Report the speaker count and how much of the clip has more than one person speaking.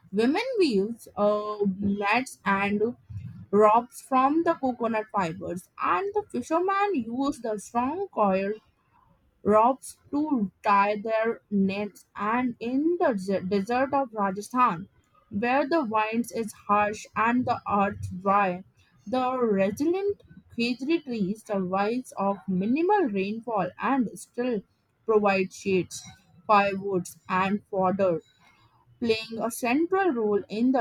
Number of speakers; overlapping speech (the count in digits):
1, no overlap